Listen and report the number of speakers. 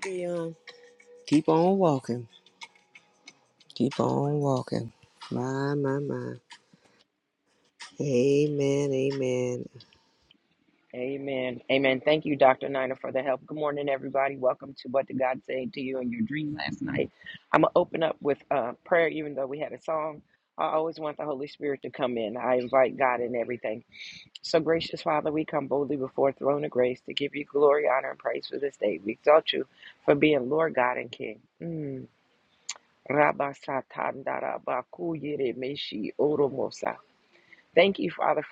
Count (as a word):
two